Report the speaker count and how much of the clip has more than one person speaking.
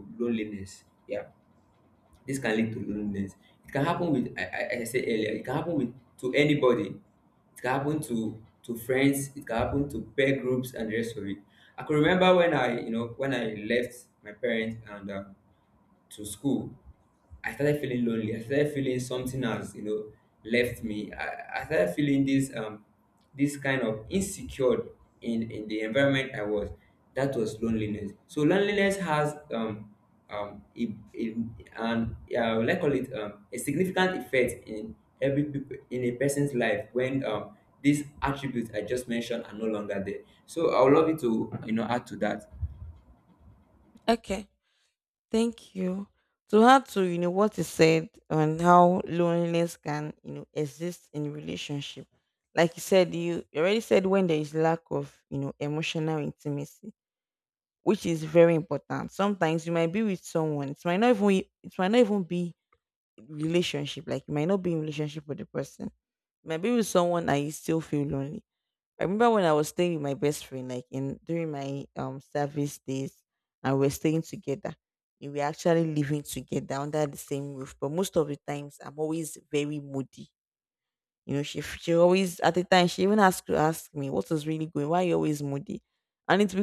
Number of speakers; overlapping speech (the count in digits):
2, no overlap